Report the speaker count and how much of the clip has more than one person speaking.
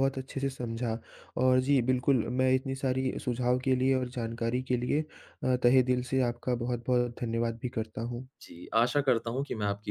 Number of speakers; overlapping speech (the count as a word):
two, no overlap